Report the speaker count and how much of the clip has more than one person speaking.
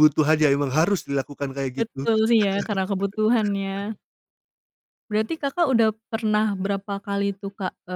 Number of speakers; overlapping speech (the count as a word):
two, about 4%